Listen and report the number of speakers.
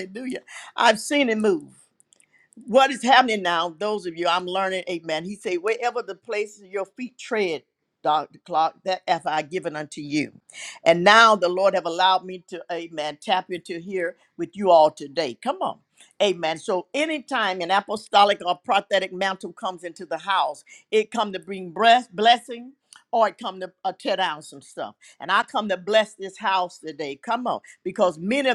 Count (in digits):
1